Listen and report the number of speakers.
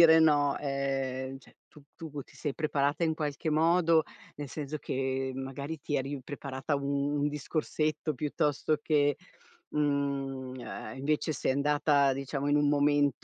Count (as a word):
one